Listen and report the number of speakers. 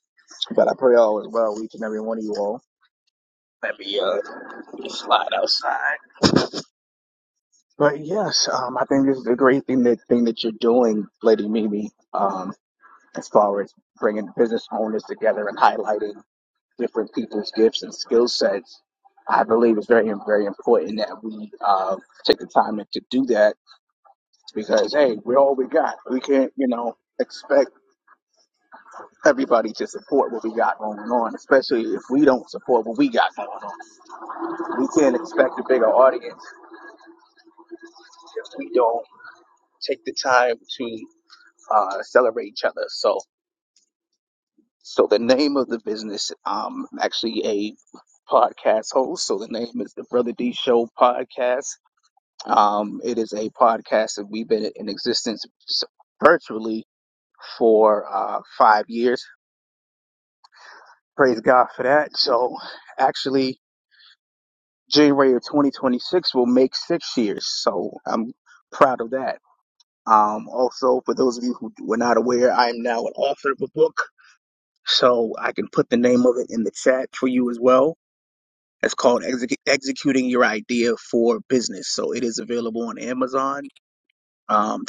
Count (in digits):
1